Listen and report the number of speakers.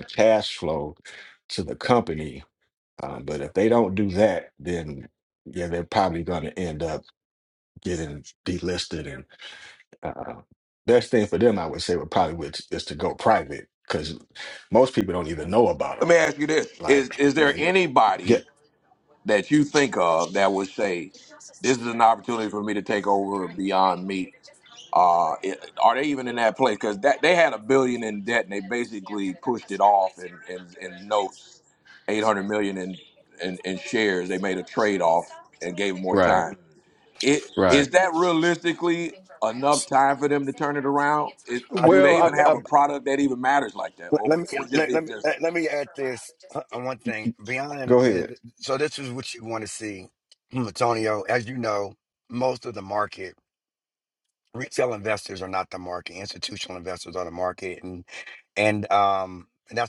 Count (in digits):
3